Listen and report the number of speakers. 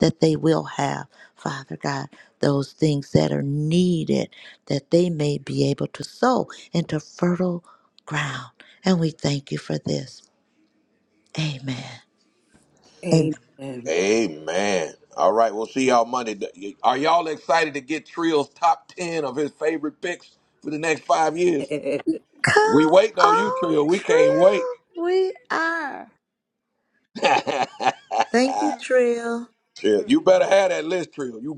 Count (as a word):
three